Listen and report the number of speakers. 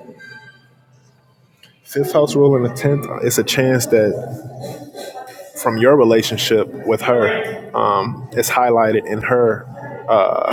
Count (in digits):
1